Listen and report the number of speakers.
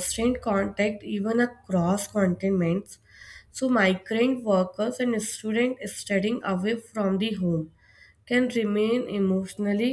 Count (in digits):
1